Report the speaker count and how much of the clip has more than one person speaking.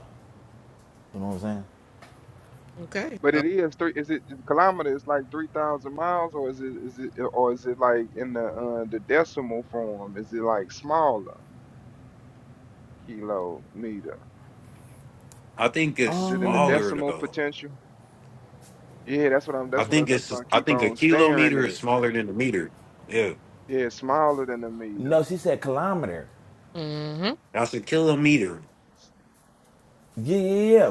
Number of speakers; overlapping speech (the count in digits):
4, about 12%